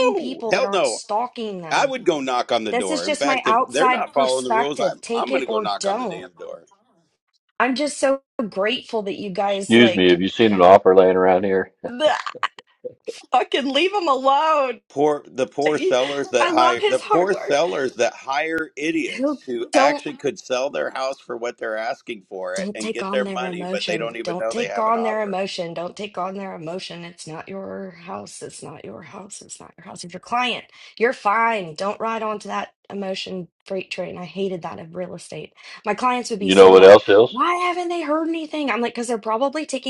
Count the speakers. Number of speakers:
3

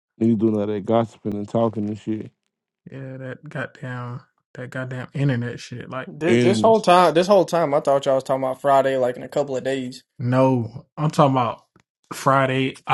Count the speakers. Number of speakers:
3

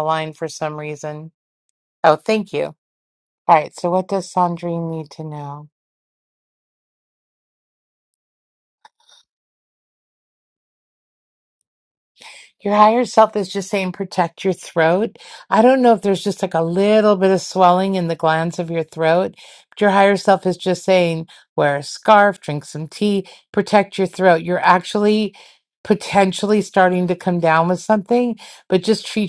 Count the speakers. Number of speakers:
1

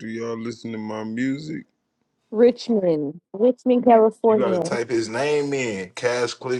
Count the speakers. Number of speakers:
3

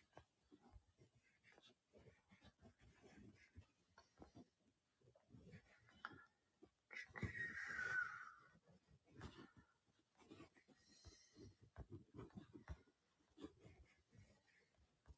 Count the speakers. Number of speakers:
0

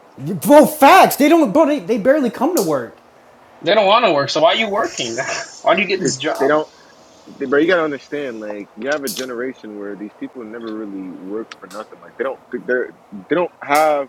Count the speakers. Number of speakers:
3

